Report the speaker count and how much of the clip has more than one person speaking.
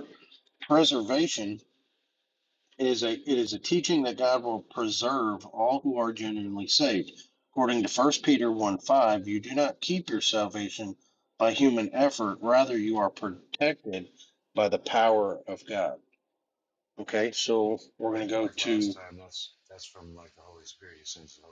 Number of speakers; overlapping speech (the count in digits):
2, about 4%